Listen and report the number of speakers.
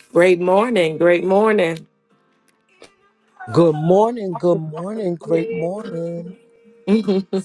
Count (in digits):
2